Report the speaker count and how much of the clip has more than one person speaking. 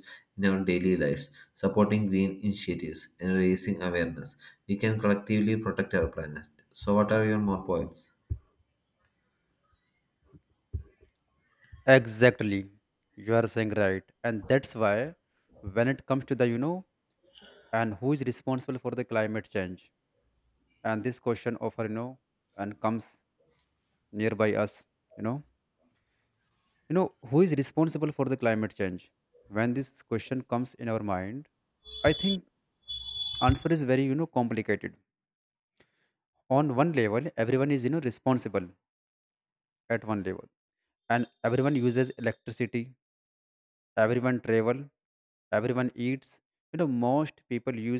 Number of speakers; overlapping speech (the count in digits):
2, no overlap